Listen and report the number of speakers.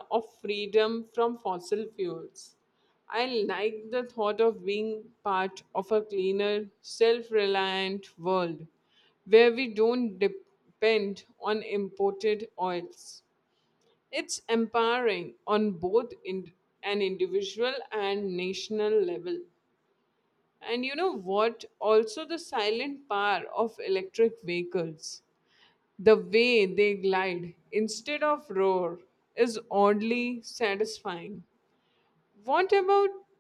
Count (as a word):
one